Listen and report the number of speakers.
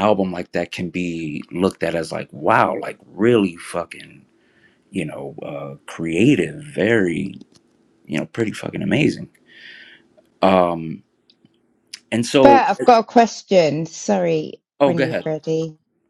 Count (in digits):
2